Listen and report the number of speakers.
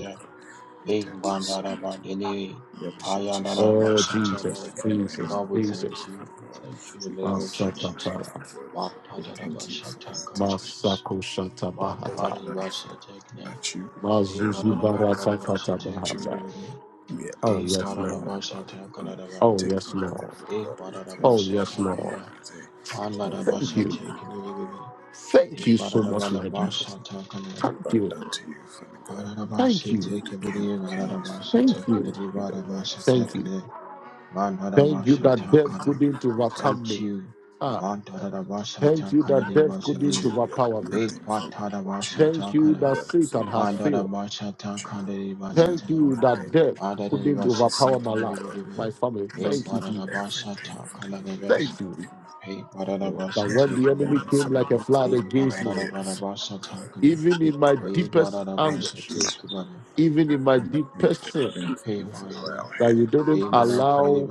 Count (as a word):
three